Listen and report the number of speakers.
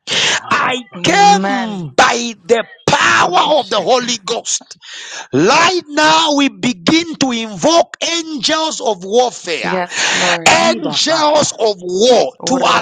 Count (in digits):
3